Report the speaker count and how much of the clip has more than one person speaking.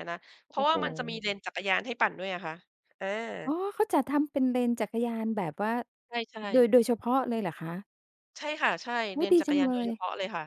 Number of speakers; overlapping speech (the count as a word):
two, about 14%